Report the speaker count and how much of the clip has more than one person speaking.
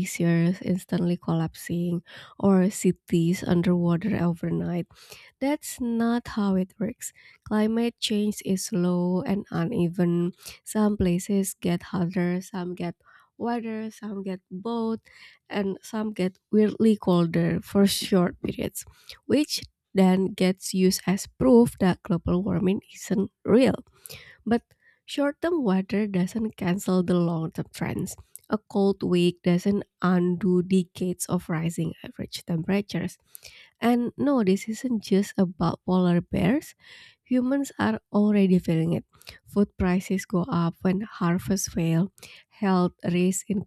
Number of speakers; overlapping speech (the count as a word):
one, no overlap